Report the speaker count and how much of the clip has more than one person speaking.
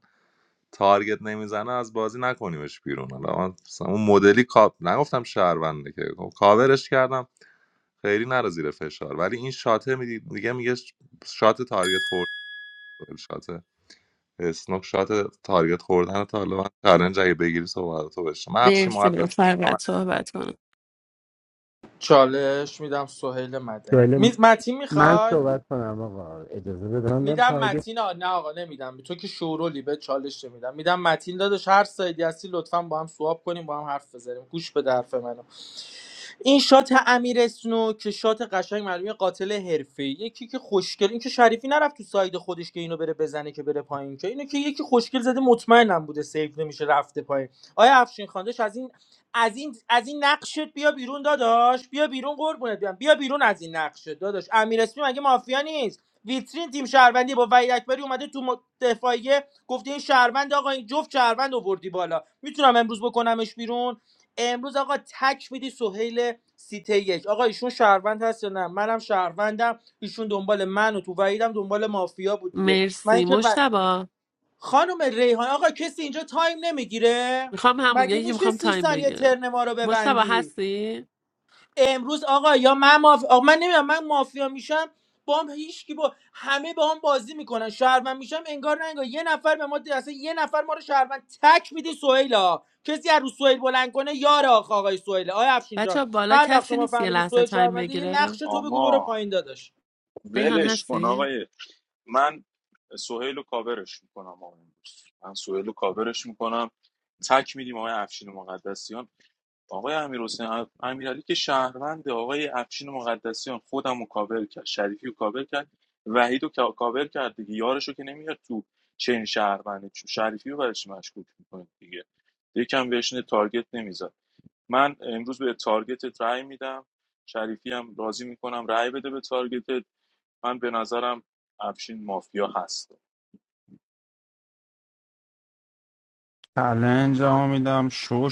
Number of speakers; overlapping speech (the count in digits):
6, about 7%